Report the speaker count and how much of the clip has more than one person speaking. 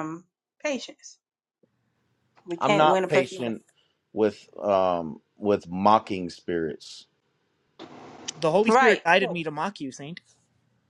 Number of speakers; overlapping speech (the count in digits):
3, about 15%